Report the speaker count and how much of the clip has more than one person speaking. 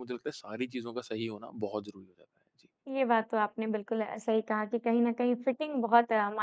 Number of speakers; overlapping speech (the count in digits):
2, no overlap